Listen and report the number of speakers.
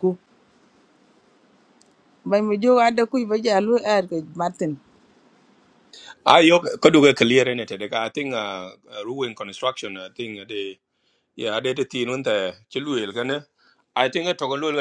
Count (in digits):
2